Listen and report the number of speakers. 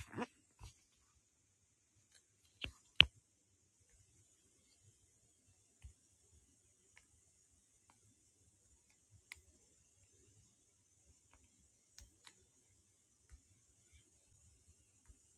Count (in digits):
0